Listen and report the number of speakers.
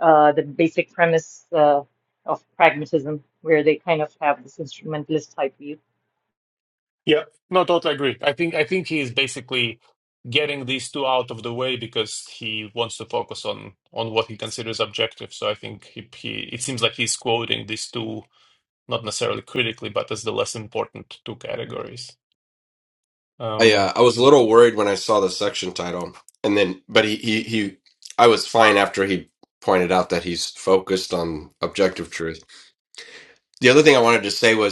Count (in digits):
3